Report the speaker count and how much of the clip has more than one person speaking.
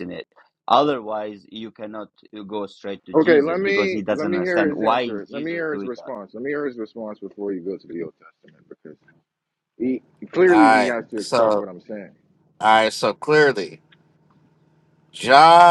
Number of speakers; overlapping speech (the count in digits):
3, about 26%